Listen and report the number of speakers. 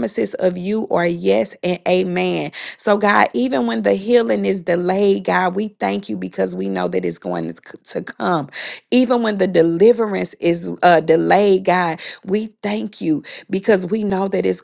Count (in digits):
1